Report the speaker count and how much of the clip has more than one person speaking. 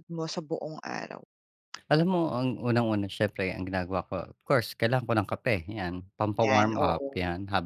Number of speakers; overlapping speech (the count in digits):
2, about 10%